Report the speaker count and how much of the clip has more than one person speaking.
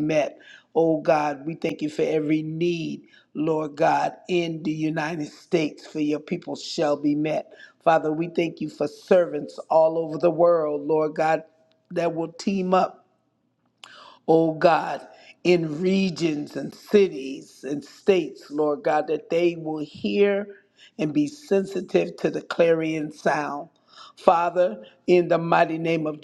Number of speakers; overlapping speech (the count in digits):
1, no overlap